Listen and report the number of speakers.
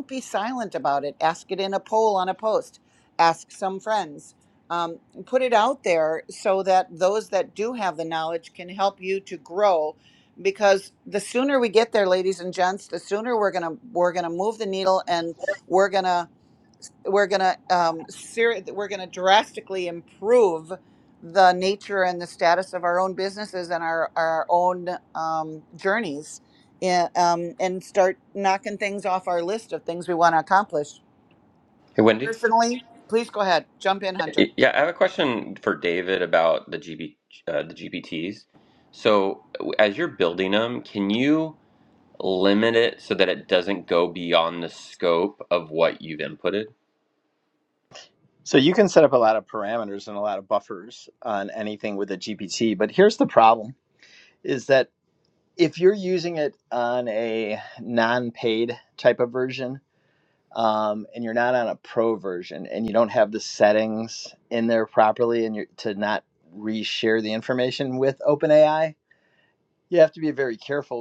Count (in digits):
3